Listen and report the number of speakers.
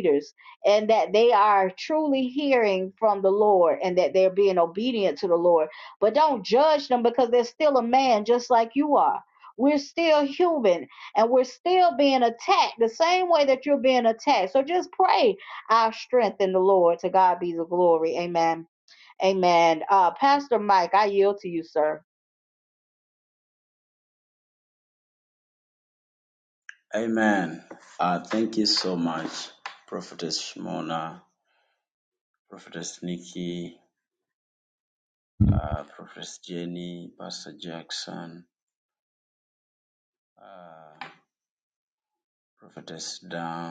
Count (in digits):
2